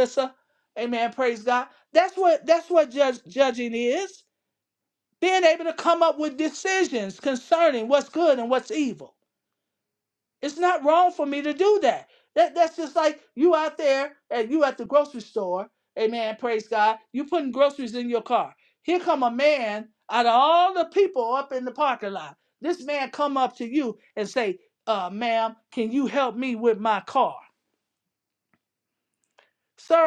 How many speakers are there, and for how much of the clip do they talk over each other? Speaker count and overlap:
1, no overlap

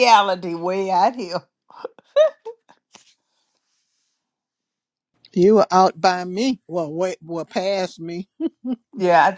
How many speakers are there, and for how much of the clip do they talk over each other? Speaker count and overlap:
2, no overlap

